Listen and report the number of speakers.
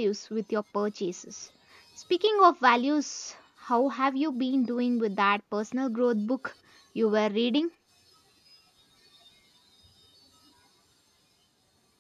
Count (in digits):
1